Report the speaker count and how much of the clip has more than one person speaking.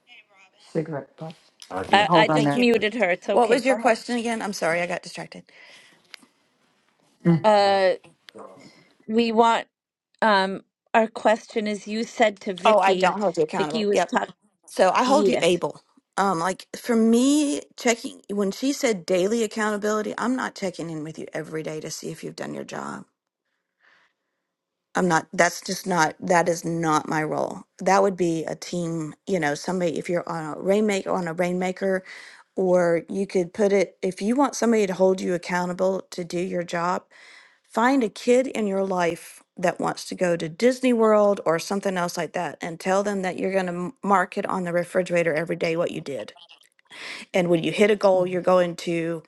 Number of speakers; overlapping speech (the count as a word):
three, about 6%